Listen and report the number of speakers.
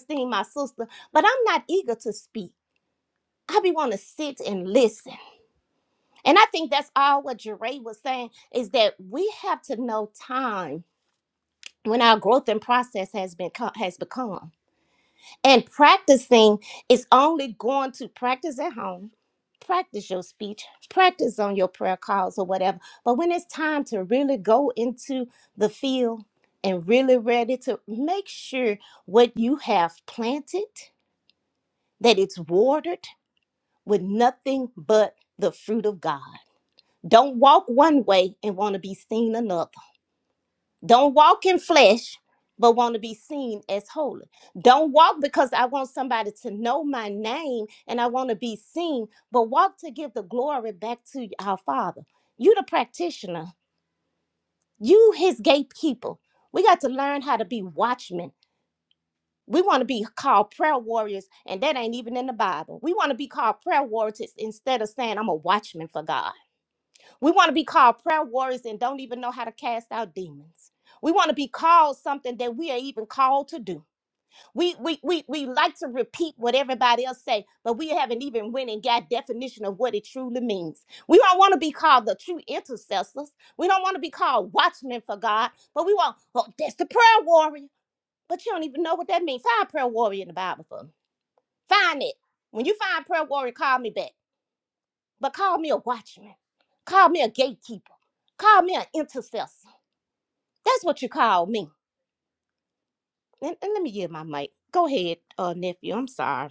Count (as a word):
one